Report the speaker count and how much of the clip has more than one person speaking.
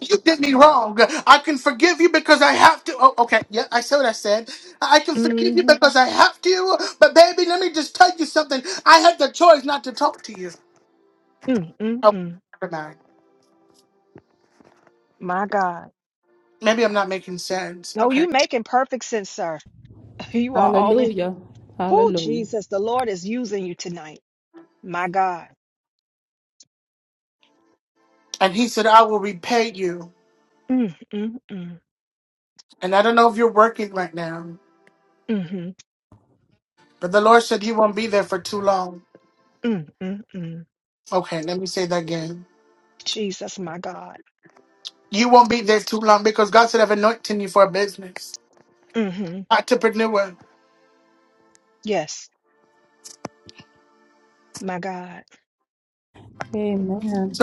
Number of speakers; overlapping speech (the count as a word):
three, about 4%